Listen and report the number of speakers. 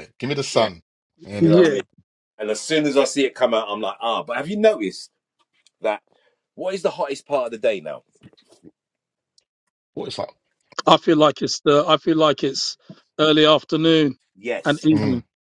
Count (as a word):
three